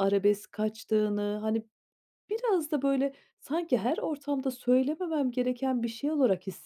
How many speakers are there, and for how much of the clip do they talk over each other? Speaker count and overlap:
one, no overlap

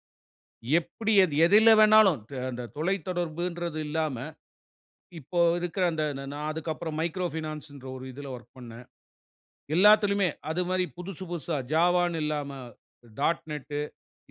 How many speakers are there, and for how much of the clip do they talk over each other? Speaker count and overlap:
one, no overlap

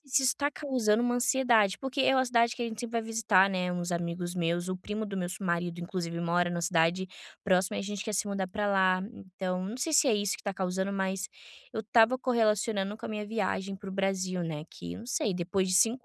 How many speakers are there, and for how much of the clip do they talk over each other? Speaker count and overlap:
one, no overlap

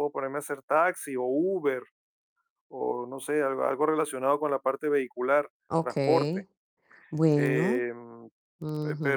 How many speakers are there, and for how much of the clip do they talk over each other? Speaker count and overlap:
two, about 15%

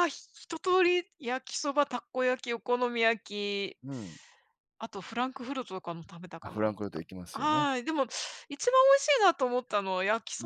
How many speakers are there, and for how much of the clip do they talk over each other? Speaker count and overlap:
two, about 6%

